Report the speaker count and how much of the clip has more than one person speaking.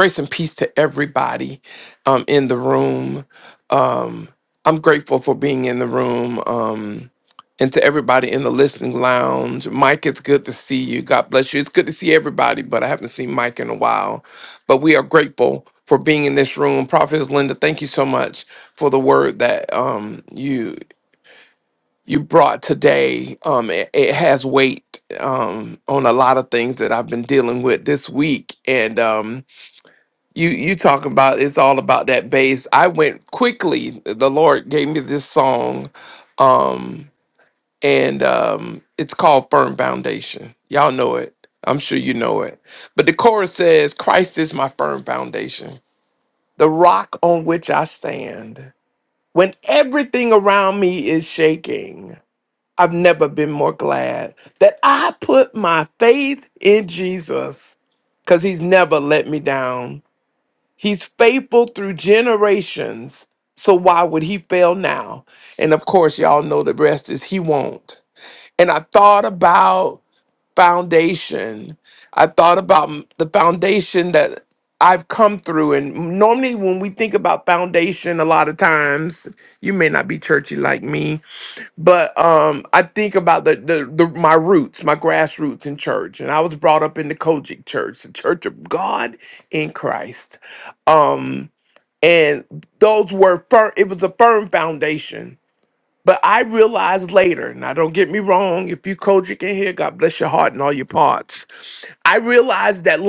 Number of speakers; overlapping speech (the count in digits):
1, no overlap